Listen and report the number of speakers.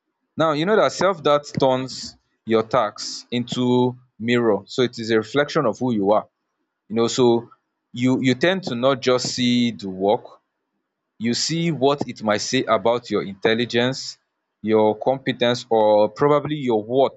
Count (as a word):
one